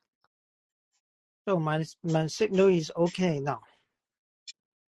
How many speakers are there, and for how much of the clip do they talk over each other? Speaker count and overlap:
one, no overlap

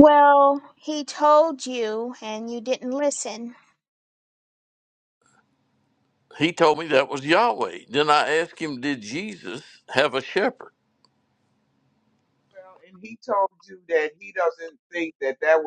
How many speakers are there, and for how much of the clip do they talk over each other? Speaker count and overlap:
three, no overlap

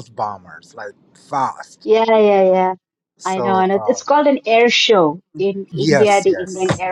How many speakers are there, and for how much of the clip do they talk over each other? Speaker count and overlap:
two, about 24%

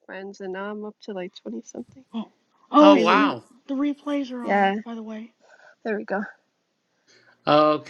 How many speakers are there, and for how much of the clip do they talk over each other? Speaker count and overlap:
three, about 12%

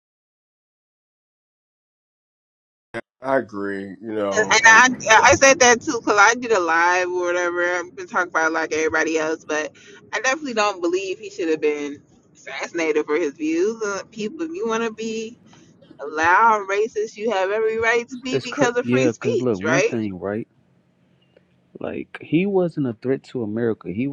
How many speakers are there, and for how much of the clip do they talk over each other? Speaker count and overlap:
three, about 9%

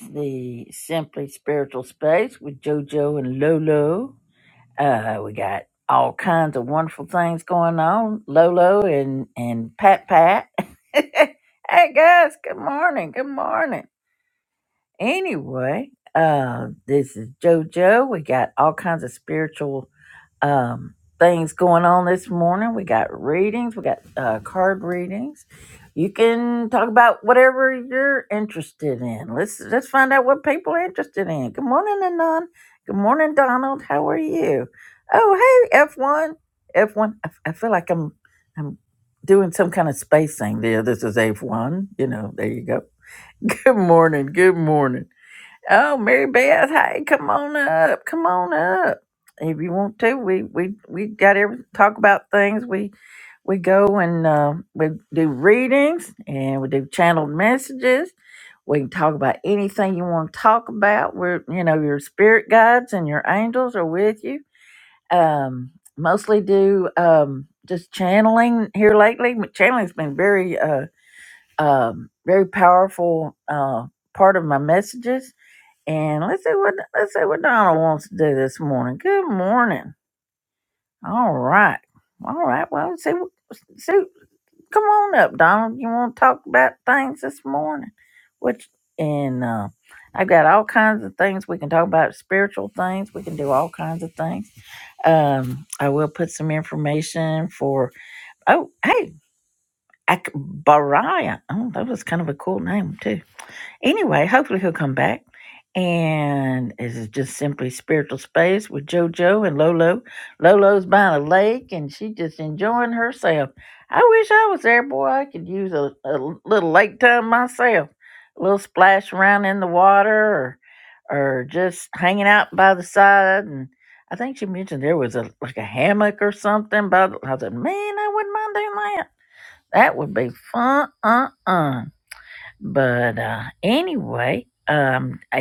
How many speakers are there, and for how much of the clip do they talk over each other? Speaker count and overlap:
one, no overlap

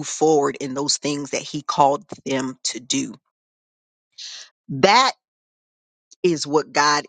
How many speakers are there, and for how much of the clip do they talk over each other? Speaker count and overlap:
one, no overlap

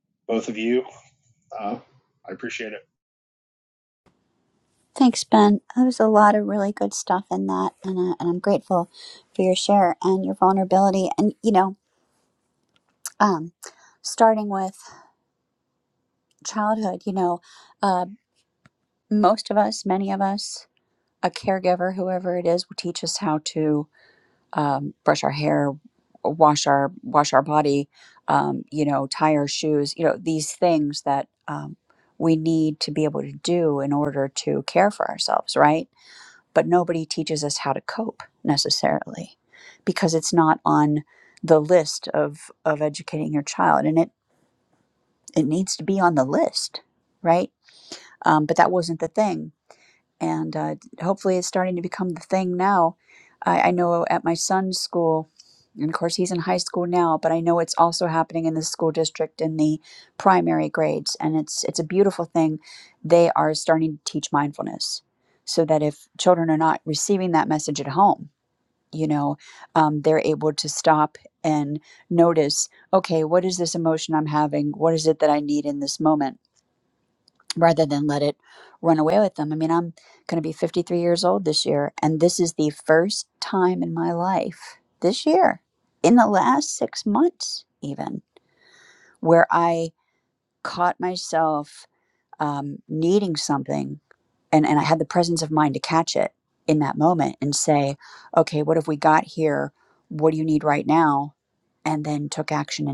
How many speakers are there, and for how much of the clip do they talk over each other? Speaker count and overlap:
two, no overlap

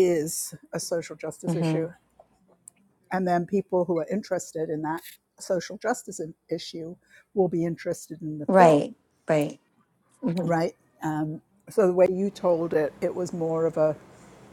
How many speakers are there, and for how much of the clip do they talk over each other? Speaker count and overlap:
two, about 5%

